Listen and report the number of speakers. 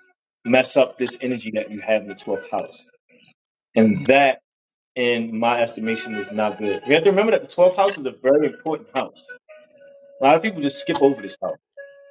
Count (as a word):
one